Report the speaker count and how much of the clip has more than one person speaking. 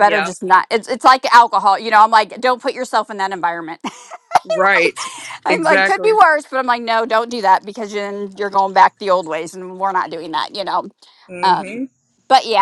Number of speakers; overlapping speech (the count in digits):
2, about 11%